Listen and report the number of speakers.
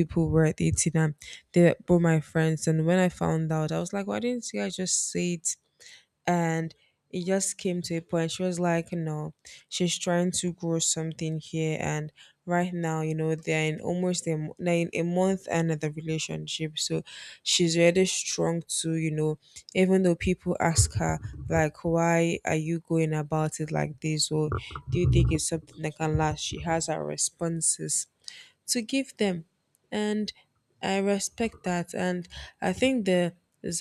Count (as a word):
one